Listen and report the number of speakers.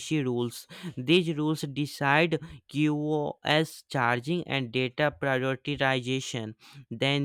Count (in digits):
1